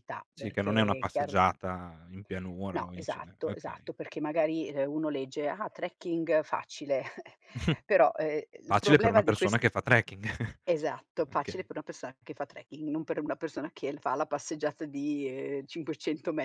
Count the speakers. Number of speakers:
two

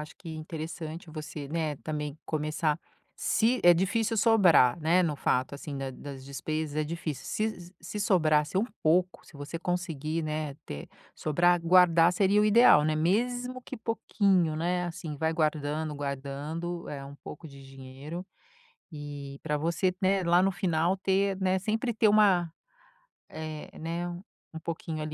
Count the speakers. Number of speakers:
one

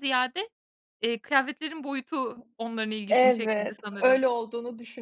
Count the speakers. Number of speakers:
two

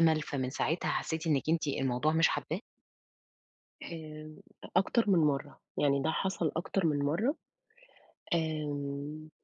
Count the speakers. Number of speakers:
two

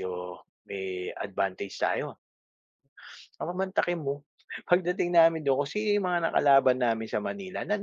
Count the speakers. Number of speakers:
one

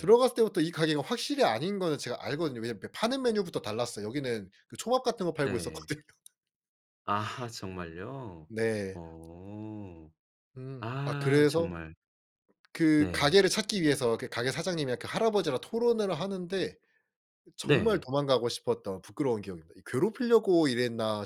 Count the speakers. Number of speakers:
two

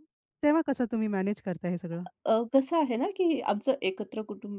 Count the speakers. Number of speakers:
two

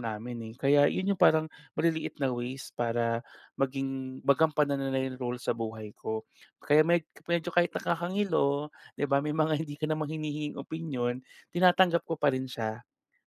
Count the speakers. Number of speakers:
one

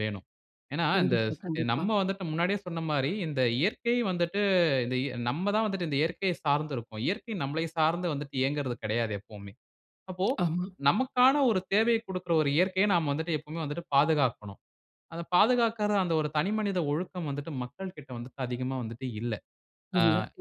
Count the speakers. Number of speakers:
two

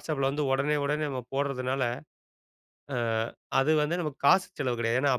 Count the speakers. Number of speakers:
one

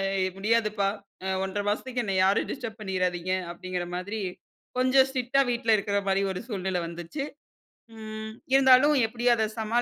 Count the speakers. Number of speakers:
one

